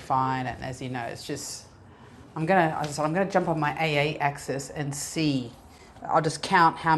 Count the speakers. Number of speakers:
1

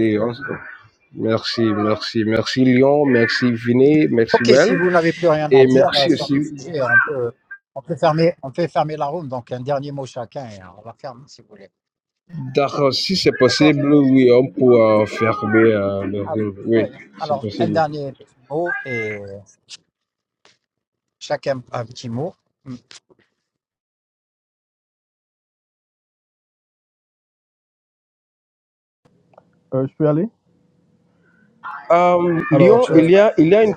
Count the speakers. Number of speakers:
3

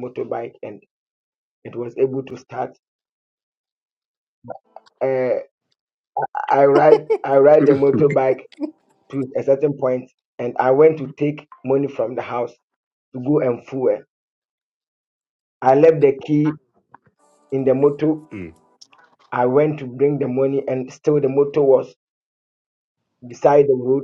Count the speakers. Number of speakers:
1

